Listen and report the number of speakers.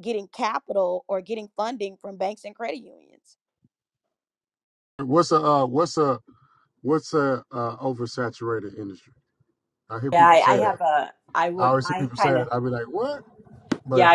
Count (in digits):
3